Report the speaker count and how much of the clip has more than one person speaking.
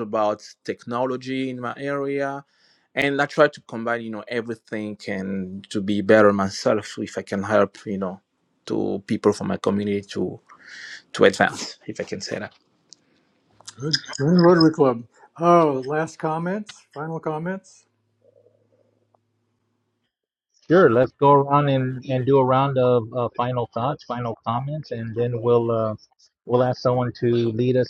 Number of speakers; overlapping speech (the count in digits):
3, no overlap